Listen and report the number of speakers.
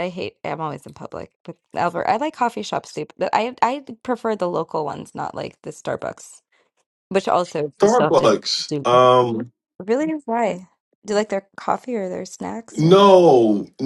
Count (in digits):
2